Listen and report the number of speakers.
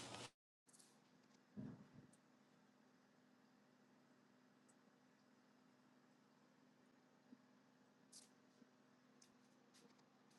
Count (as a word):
zero